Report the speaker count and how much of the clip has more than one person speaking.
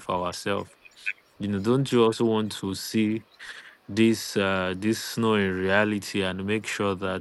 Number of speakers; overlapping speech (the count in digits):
1, no overlap